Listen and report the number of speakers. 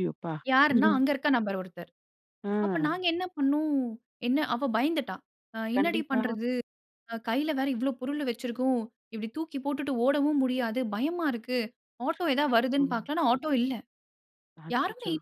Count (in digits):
2